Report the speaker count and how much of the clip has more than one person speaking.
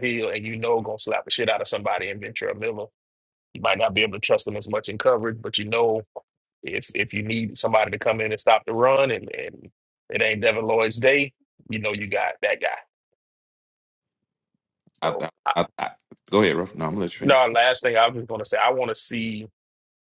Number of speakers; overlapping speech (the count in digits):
2, about 3%